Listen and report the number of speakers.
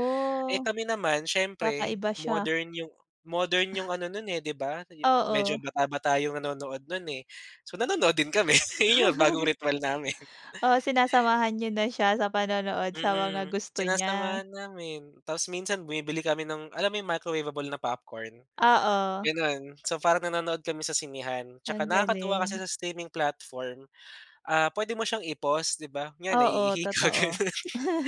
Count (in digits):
2